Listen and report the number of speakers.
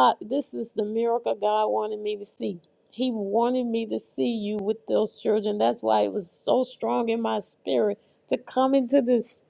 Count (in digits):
1